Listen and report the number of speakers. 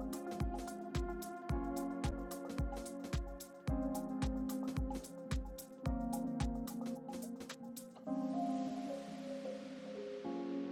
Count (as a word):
zero